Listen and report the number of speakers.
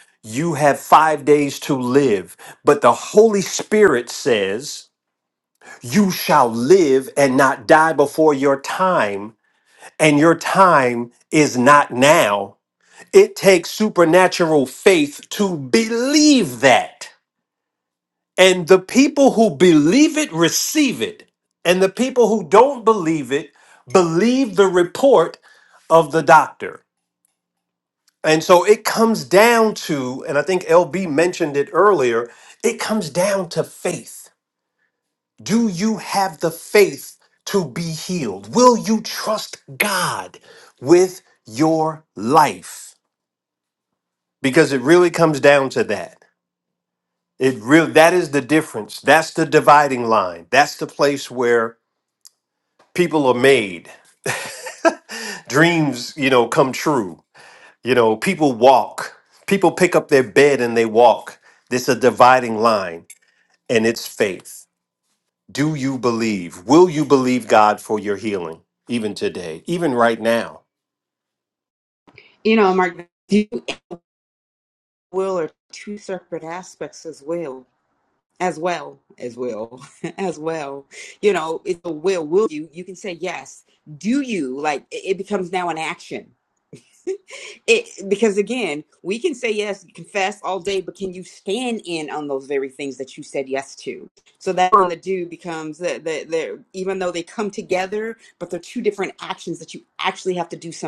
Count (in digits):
2